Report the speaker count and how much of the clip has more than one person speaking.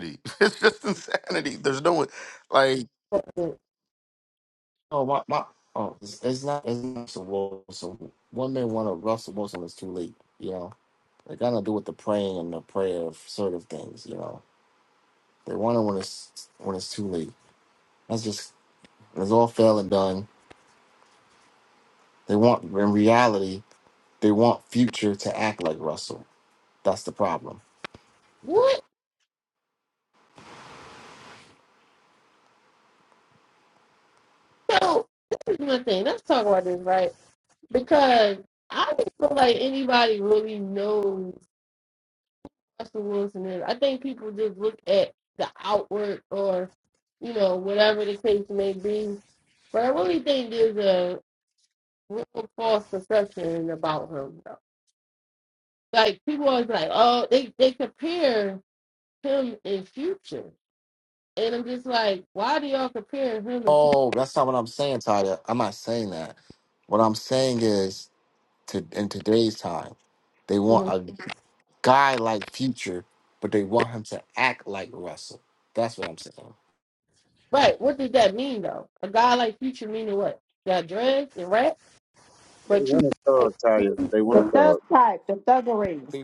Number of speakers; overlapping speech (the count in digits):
5, about 1%